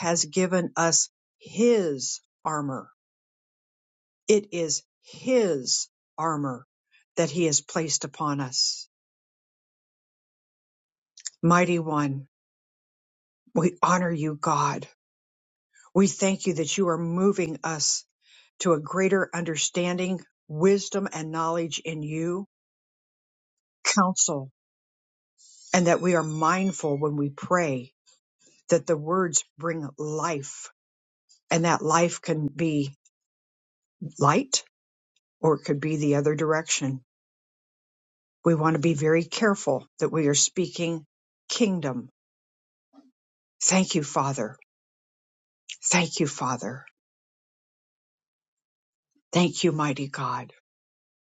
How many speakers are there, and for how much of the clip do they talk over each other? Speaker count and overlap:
1, no overlap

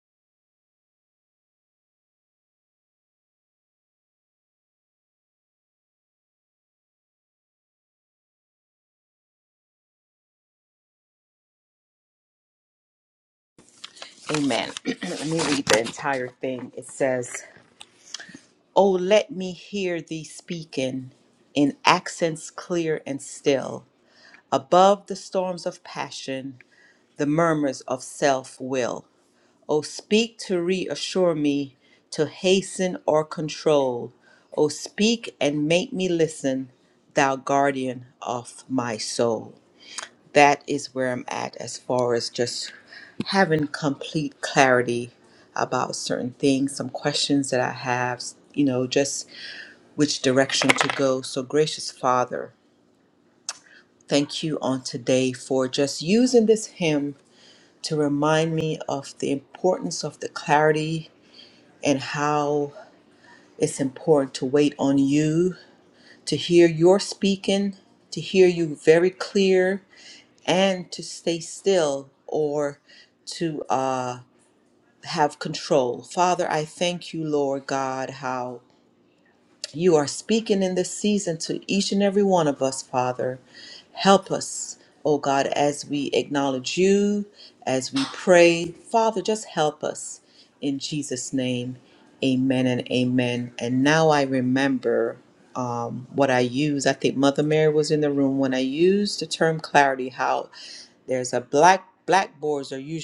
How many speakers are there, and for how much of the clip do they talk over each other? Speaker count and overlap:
1, no overlap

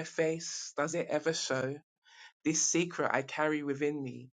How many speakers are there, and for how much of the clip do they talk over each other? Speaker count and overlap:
1, no overlap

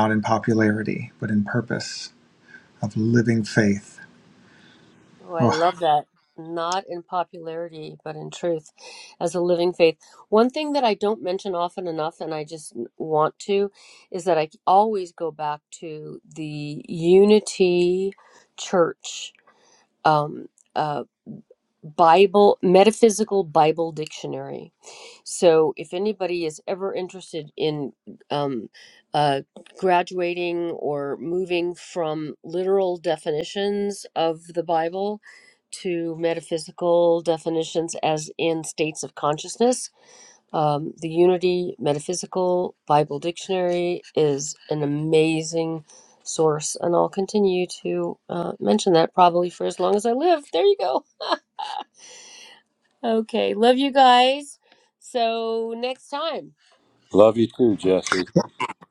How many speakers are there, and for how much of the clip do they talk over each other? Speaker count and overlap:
3, under 1%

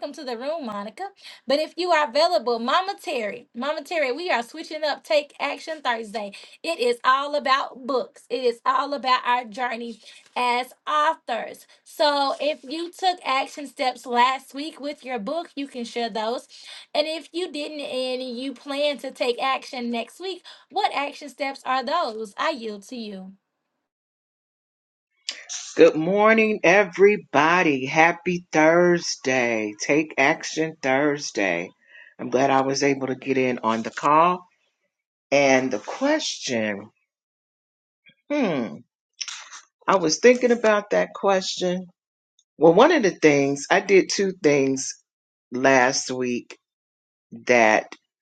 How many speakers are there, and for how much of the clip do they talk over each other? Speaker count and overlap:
2, no overlap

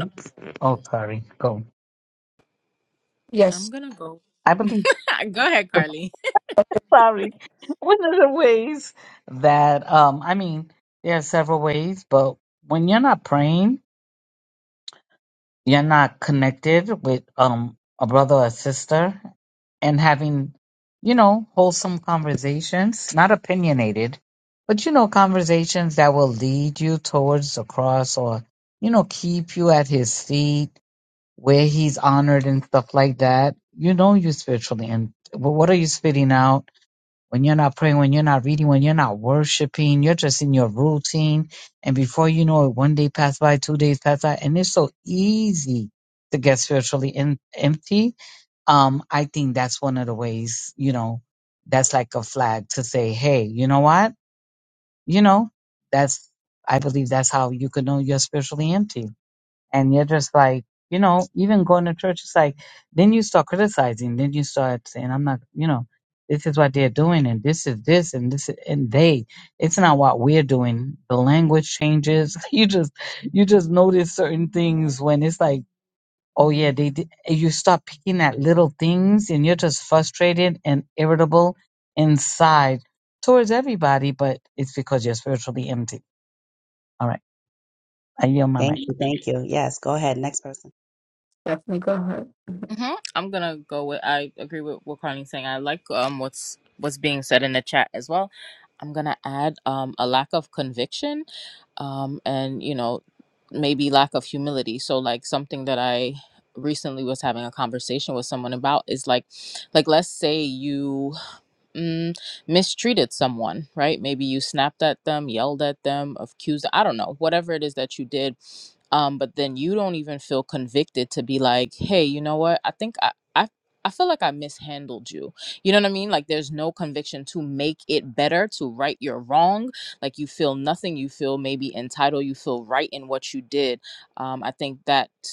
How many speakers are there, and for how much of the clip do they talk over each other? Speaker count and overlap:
4, under 1%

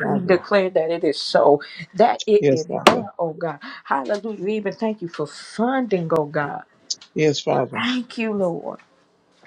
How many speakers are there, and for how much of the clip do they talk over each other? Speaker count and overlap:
2, about 11%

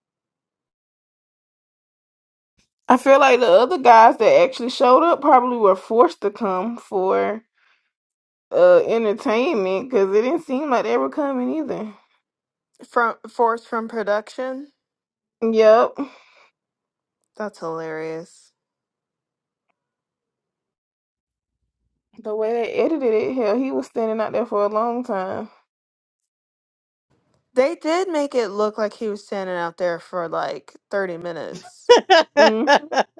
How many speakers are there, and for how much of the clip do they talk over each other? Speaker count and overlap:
2, no overlap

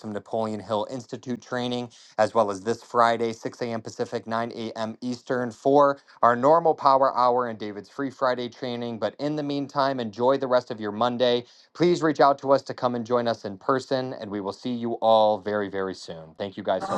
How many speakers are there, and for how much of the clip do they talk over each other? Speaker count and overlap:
1, no overlap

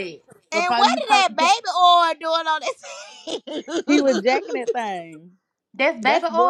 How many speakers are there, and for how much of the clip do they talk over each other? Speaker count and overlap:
3, about 33%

